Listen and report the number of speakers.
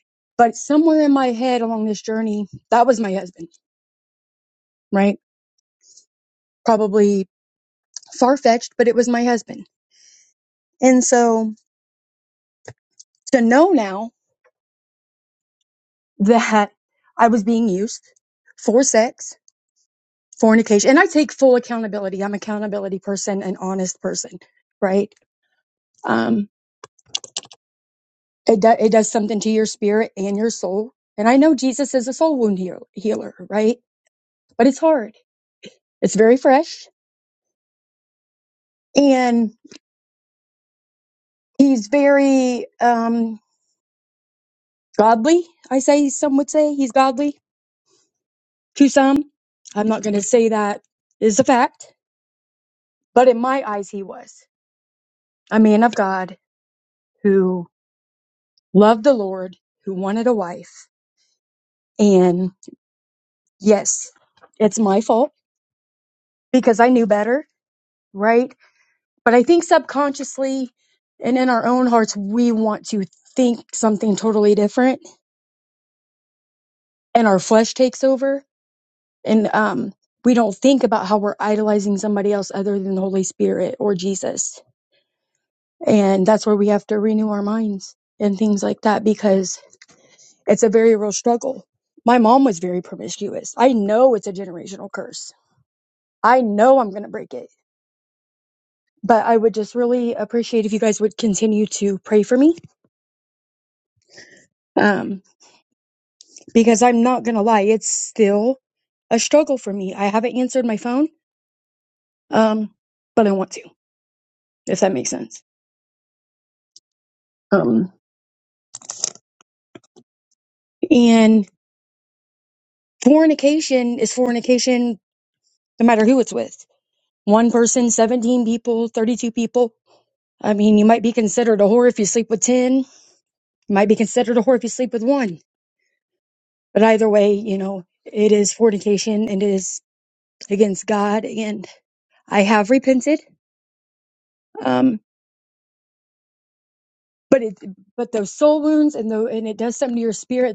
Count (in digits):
1